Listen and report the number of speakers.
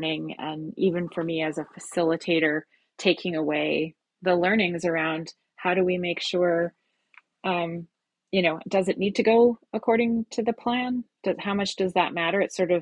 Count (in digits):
1